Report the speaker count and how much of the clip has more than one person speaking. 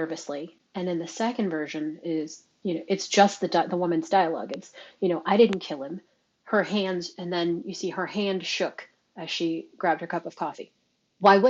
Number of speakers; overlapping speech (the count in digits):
1, no overlap